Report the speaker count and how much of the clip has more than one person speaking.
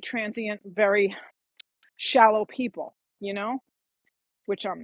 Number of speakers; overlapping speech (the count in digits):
1, no overlap